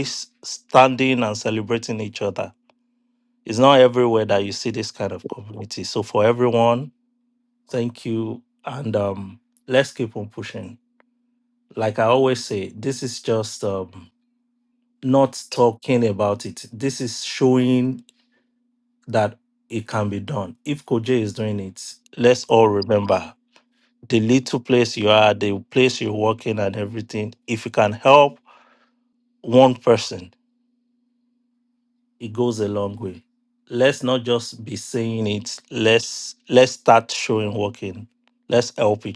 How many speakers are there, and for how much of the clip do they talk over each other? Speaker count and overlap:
1, no overlap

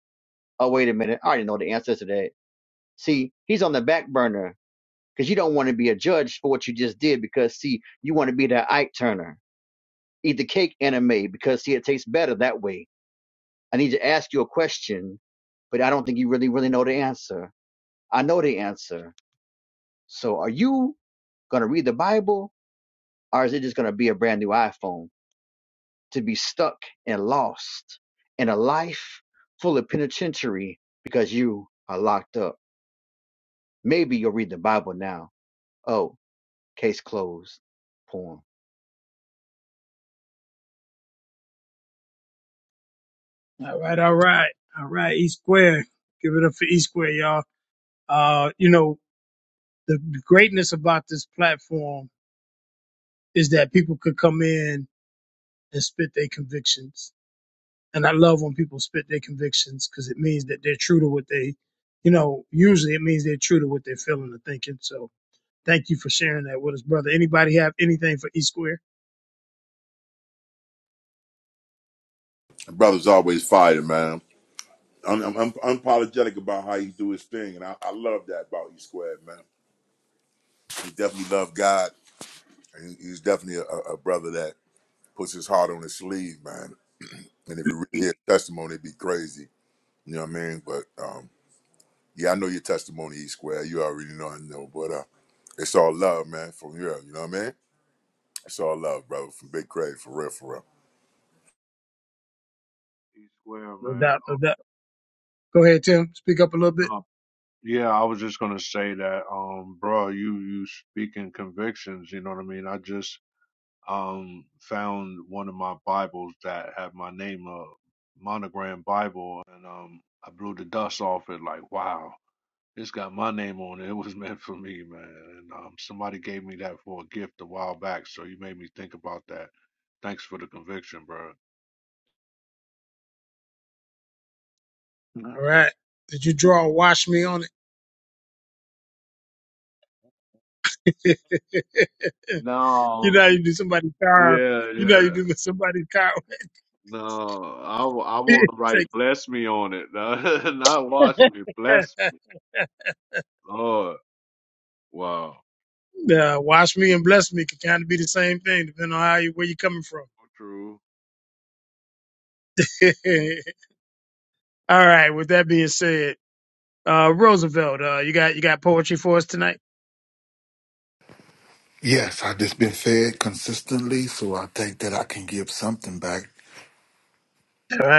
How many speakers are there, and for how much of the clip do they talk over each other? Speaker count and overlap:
5, about 1%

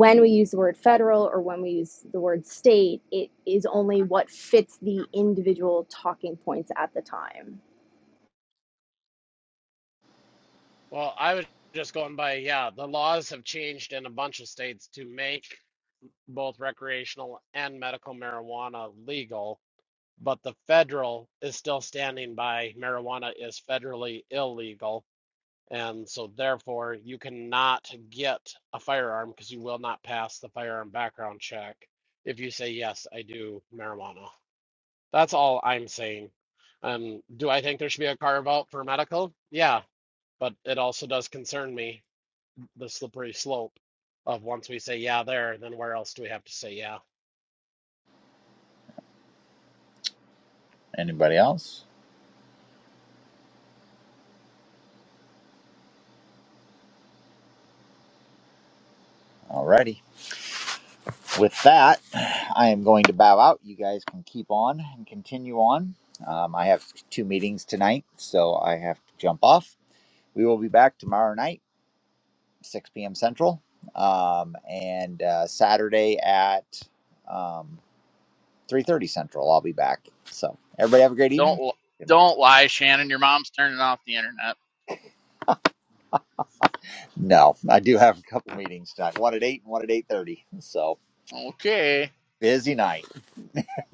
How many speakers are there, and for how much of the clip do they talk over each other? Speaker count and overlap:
4, under 1%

